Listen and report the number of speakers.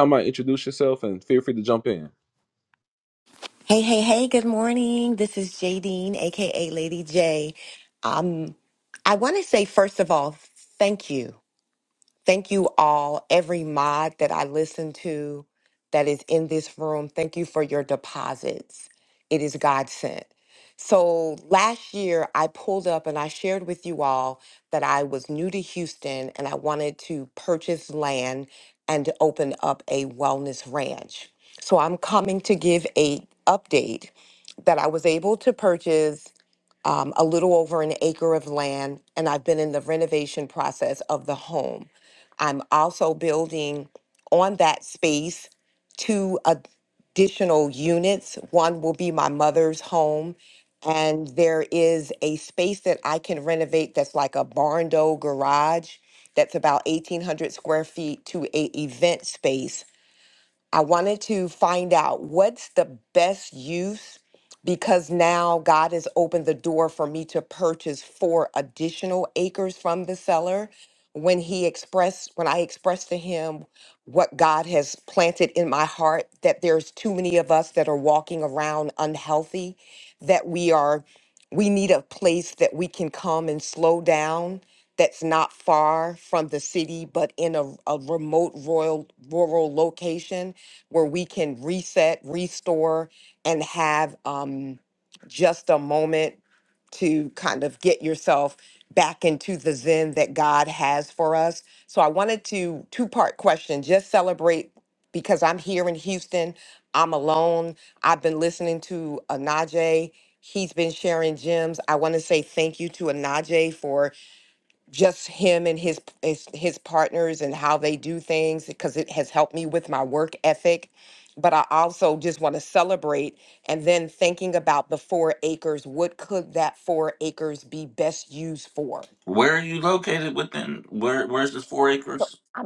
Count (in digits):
3